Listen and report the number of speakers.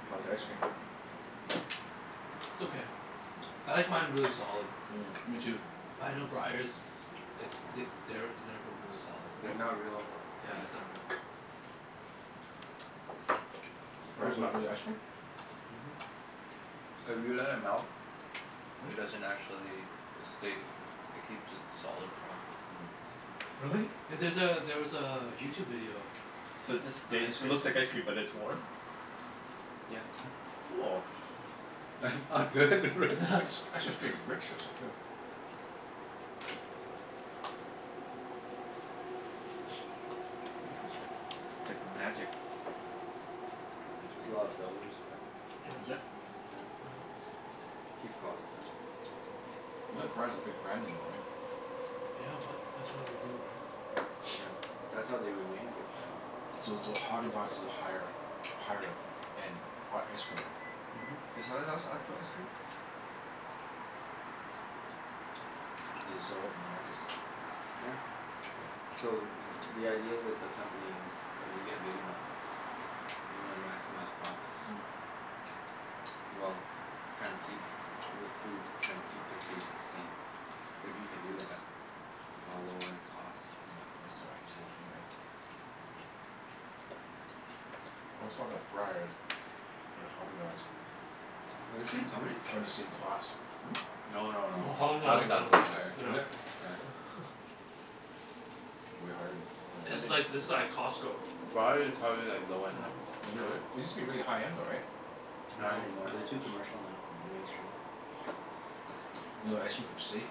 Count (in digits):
4